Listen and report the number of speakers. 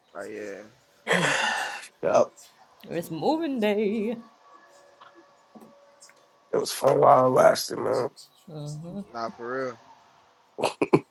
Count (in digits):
3